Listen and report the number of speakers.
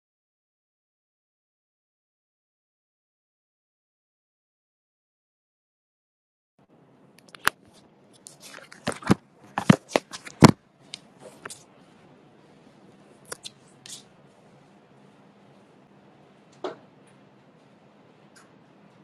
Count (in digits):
0